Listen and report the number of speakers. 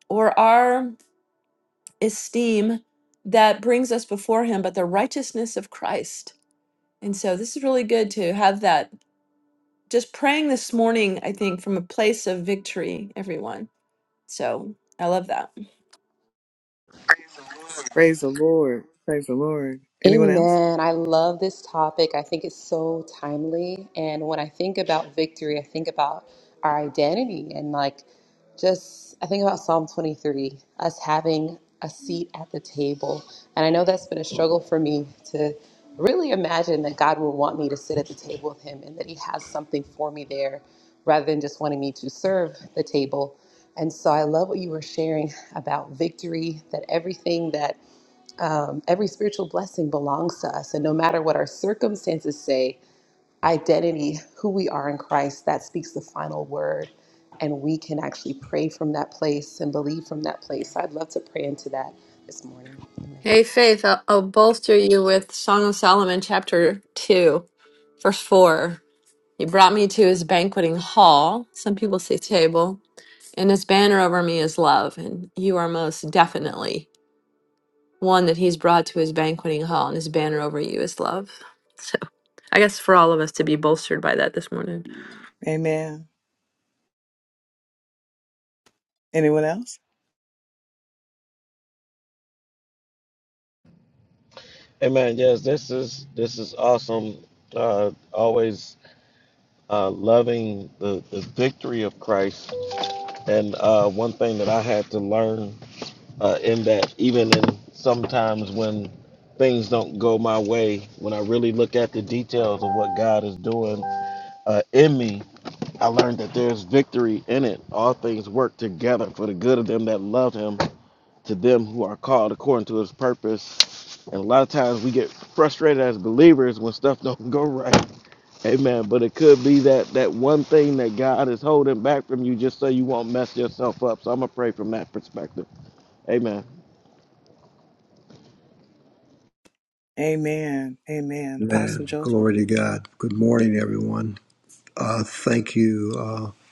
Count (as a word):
five